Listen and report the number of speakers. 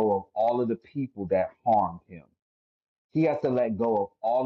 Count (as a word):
one